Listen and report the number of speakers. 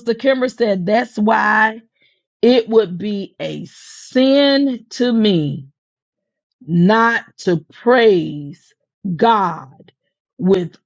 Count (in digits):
1